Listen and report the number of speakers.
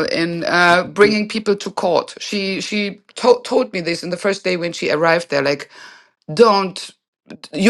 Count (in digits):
1